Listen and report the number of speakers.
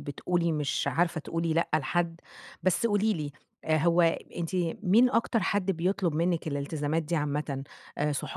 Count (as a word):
one